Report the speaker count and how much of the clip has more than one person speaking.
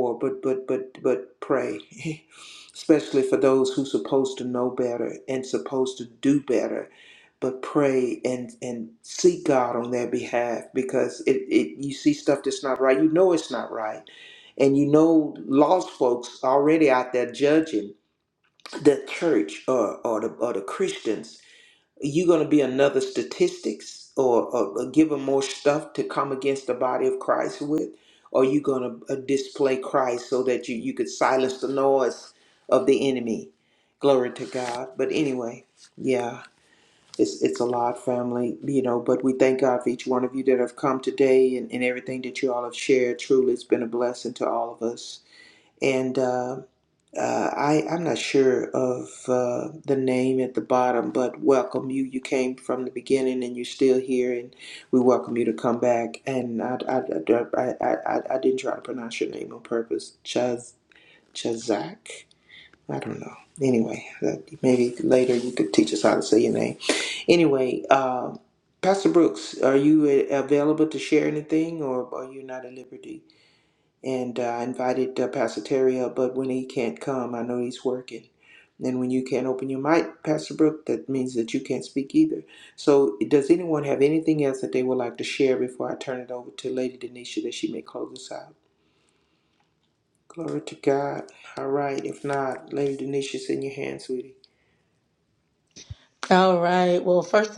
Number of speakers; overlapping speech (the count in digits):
2, no overlap